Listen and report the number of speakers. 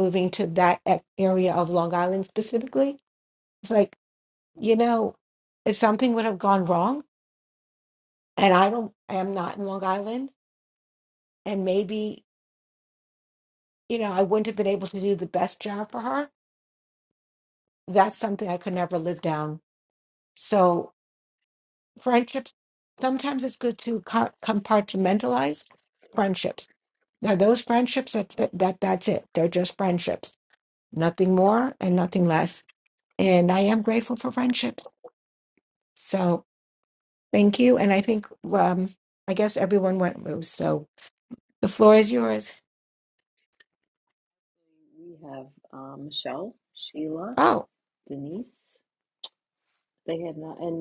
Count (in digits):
2